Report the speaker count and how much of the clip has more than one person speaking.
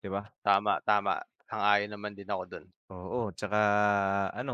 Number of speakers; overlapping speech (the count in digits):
2, no overlap